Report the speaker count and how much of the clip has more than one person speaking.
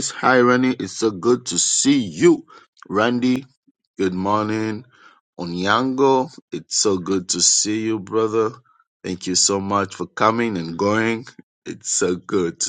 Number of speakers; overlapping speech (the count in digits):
1, no overlap